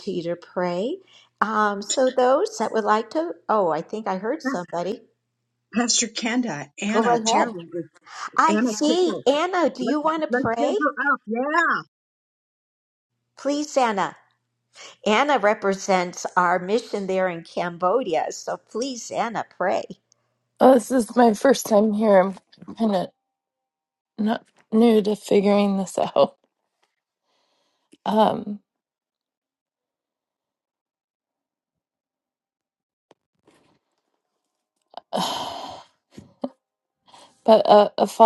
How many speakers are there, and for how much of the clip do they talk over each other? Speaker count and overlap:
three, about 5%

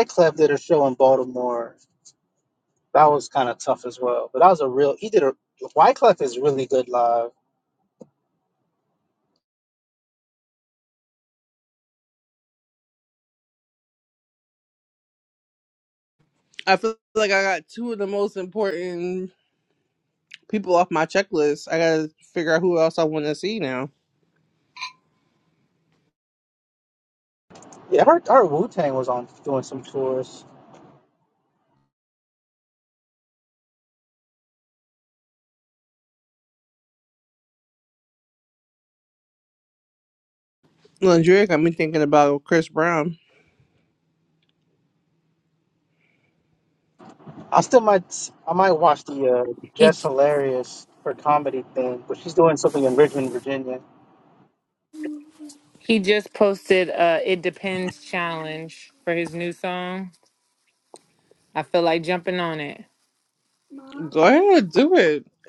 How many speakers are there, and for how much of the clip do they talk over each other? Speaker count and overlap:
three, under 1%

